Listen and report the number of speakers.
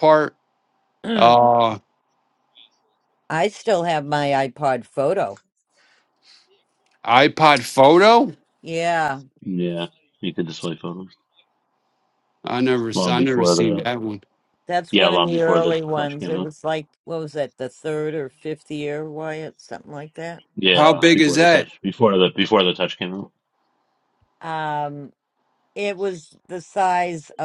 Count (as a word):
three